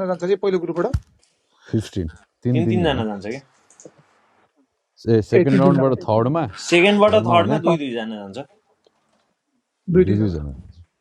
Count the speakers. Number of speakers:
three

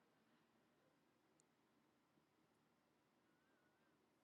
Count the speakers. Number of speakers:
zero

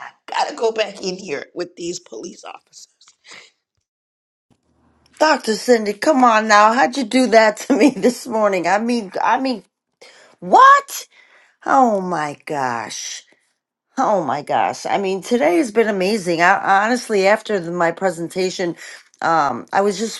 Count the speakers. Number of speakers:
two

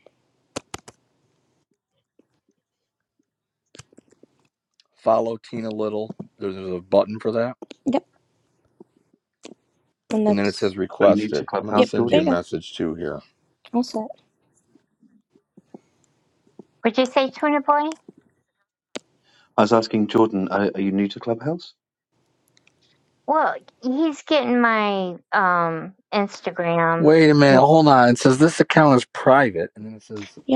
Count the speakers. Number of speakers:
four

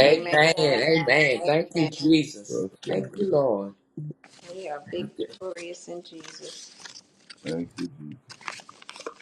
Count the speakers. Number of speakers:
three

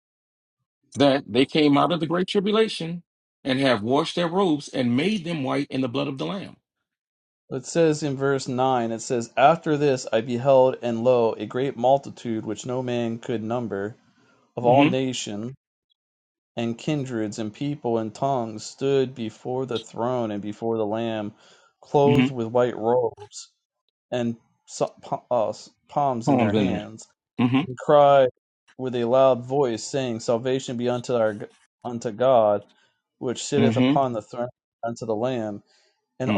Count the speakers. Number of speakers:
two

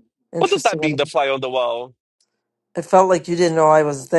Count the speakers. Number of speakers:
two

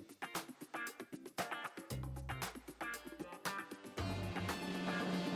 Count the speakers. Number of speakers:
zero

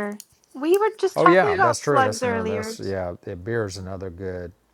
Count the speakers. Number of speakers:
two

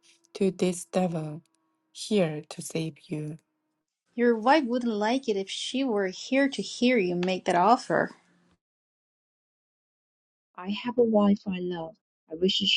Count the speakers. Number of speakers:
three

